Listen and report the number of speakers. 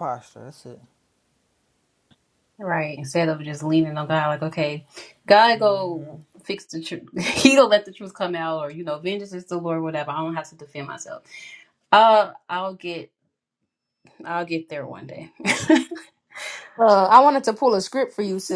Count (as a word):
three